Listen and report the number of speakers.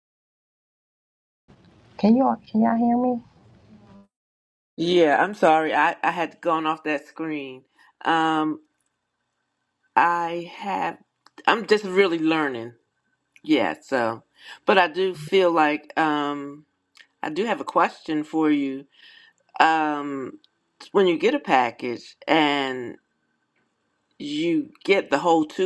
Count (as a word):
two